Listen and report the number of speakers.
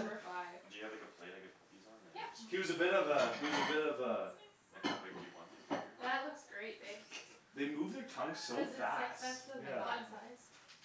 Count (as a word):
four